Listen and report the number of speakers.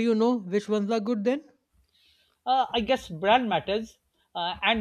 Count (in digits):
2